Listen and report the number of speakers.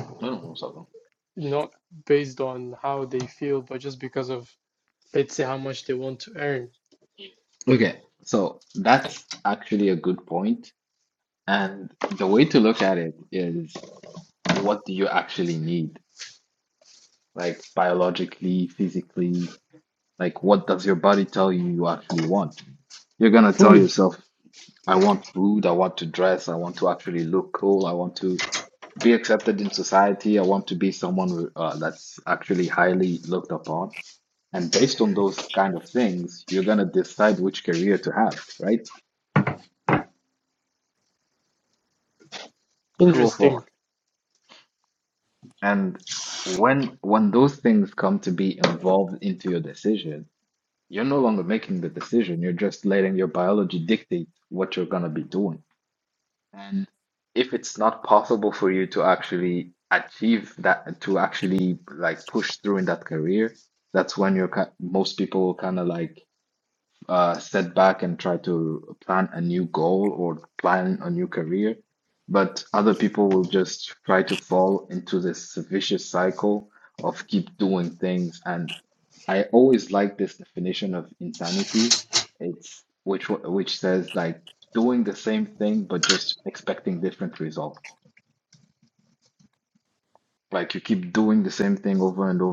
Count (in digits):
2